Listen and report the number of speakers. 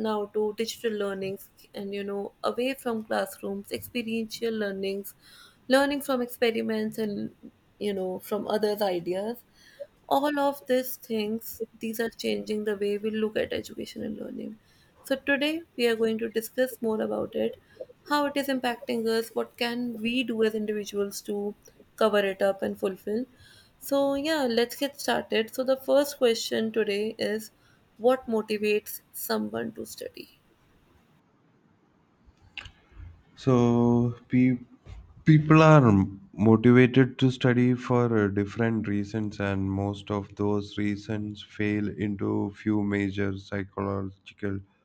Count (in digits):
2